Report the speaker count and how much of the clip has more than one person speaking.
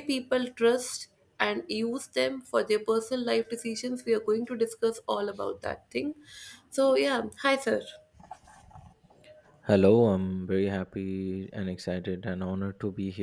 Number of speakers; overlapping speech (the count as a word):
two, no overlap